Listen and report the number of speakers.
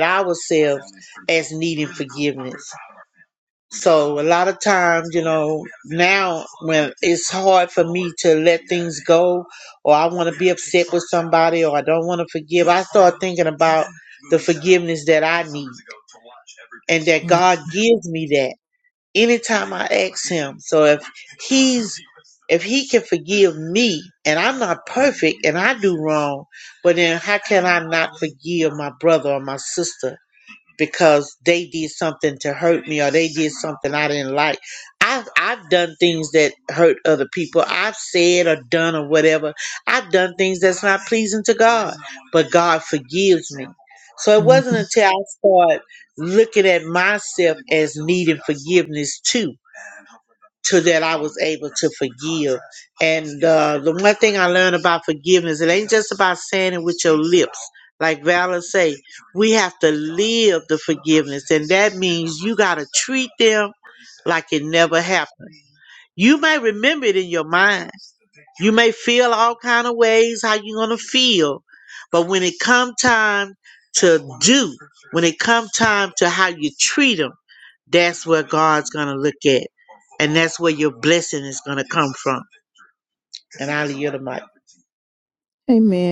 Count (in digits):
2